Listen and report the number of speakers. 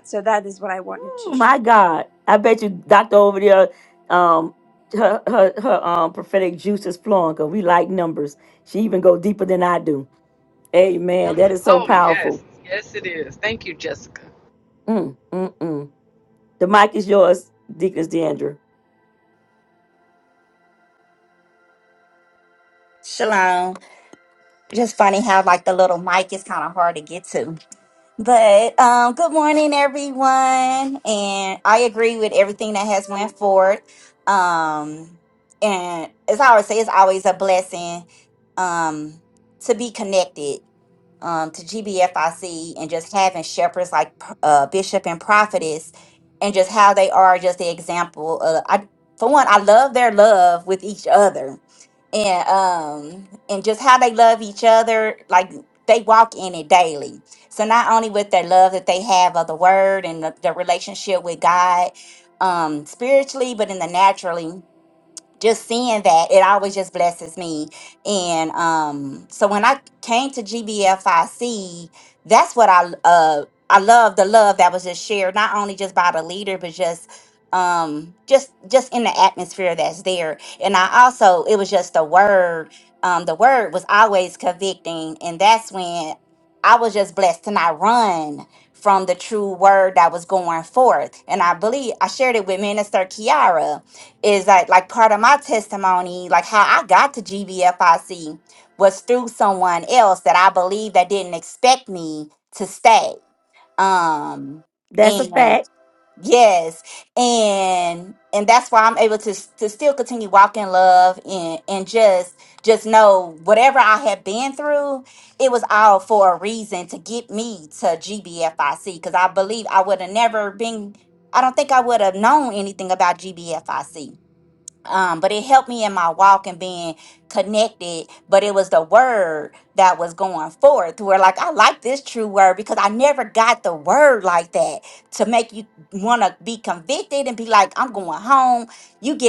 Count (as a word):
four